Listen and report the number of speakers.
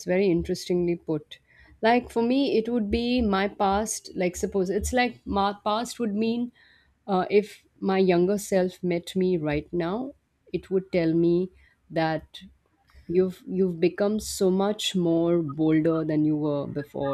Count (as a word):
one